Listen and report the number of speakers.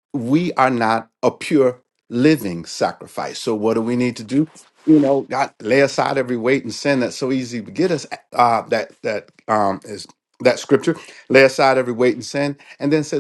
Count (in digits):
1